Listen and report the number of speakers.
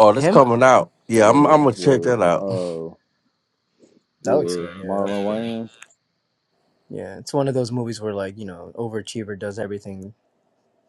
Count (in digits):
3